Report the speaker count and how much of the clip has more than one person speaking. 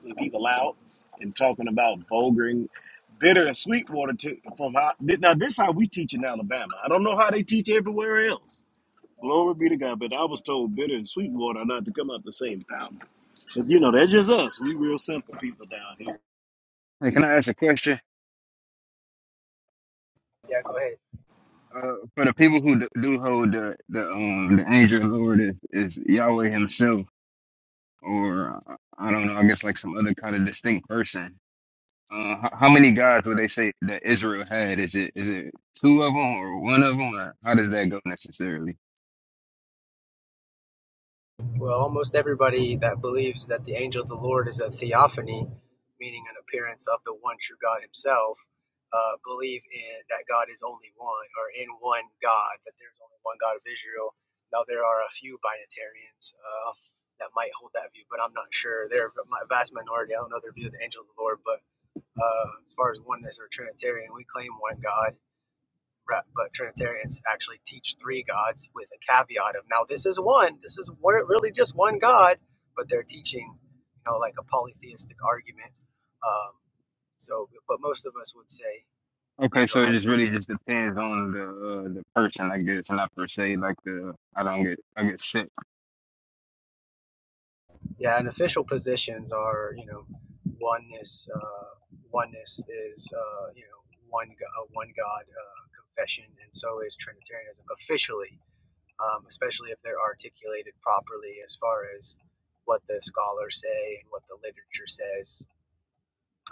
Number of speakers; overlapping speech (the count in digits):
3, about 1%